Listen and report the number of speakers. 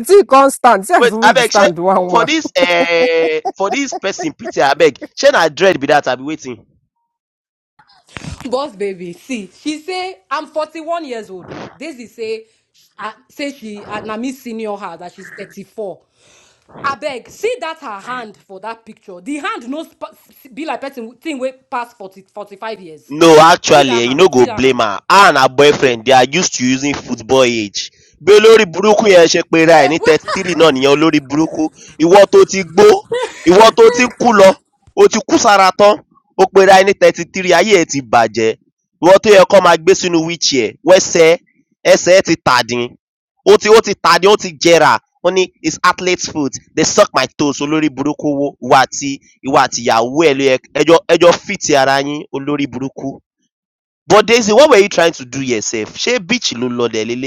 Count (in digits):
3